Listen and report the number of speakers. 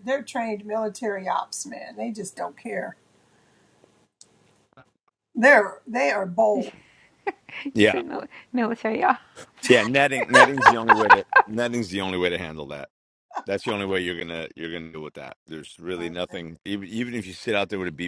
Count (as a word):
three